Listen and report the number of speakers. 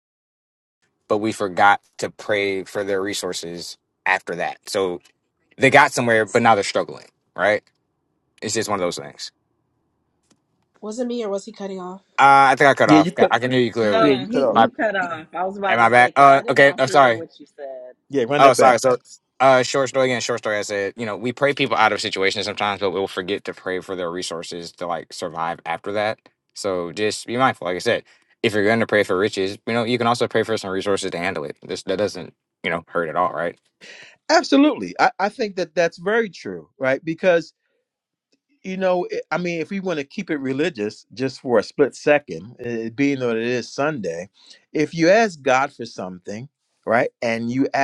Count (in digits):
4